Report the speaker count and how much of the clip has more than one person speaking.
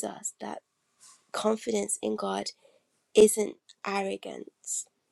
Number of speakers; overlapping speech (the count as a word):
one, no overlap